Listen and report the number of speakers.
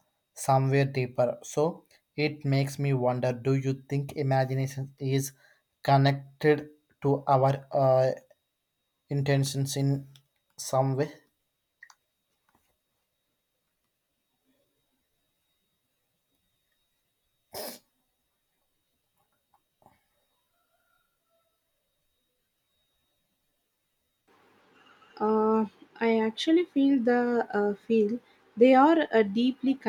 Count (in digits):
2